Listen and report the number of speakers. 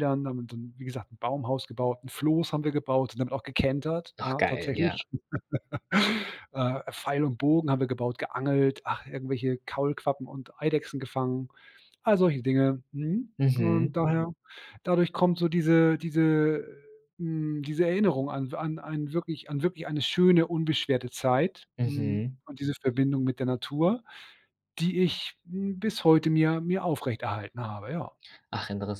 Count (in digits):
2